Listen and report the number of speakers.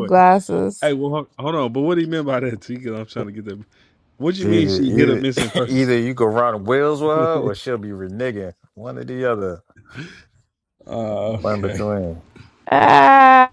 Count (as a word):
three